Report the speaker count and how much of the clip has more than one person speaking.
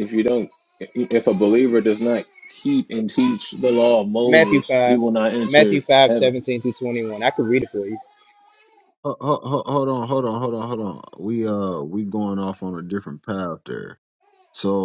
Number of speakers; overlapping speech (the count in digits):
3, about 11%